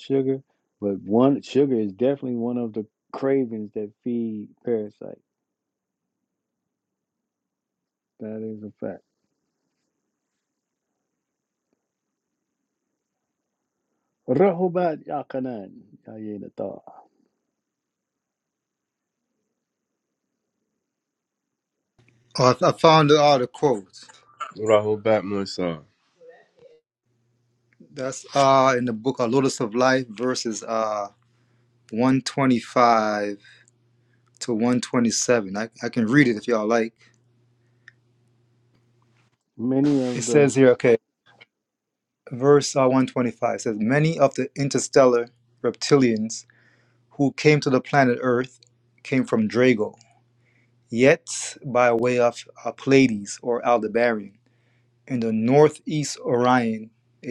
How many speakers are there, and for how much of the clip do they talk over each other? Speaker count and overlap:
3, about 1%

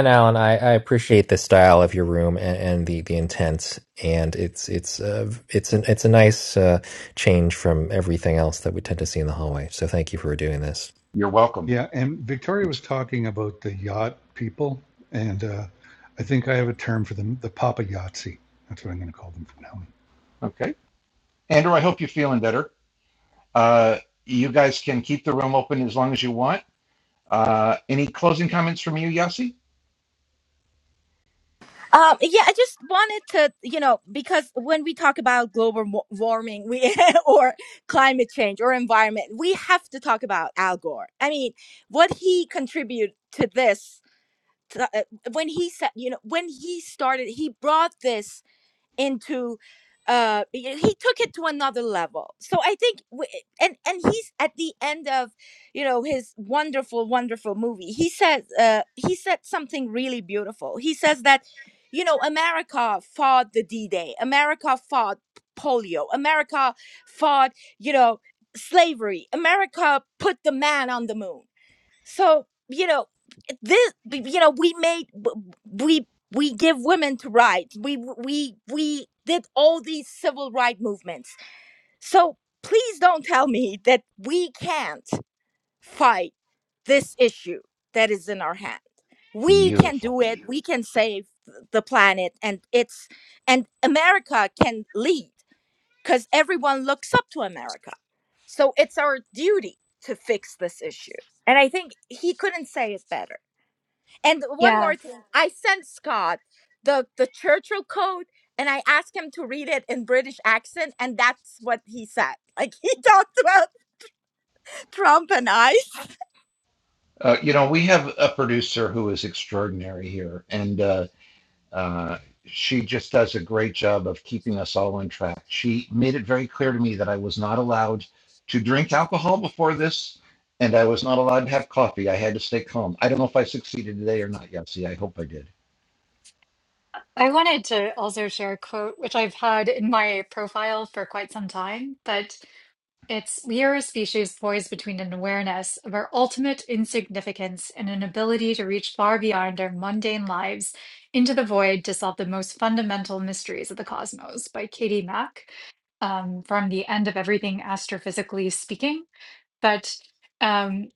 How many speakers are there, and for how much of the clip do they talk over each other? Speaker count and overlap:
5, about 1%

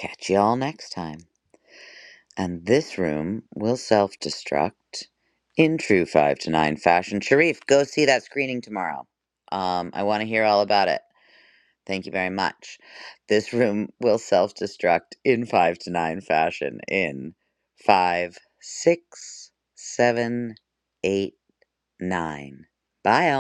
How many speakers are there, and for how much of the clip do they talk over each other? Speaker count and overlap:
1, no overlap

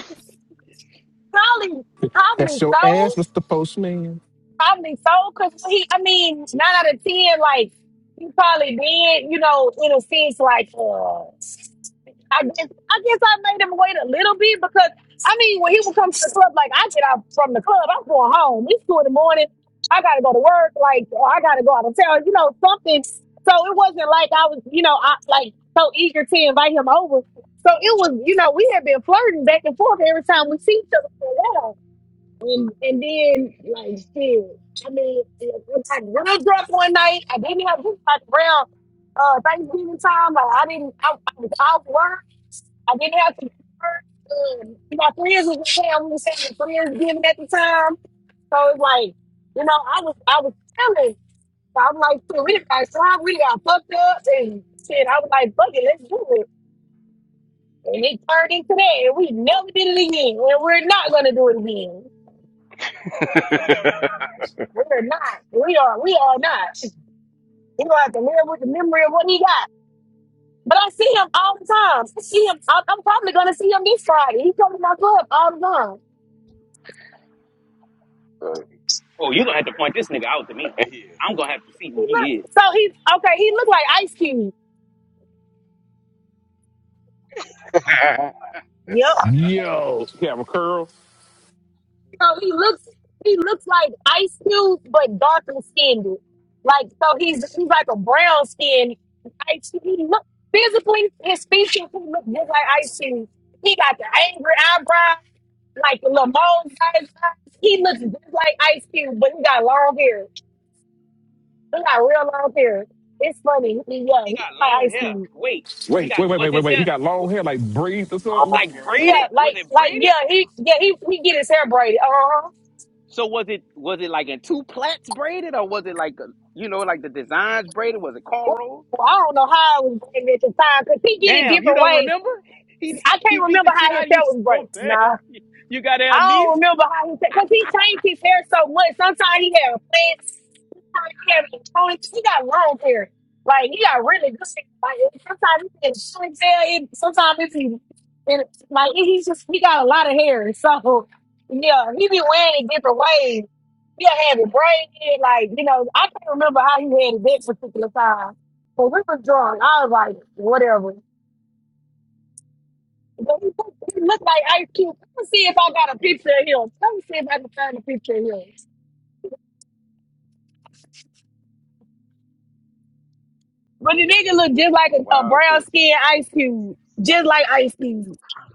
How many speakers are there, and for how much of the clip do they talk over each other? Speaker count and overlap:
4, about 5%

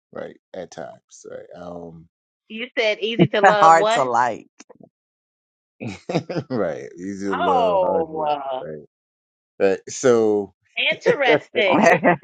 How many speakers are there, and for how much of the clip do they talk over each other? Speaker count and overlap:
3, about 18%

